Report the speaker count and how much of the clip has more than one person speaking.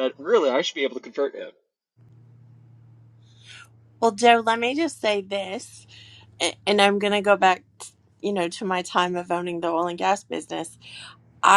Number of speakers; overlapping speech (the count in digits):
2, no overlap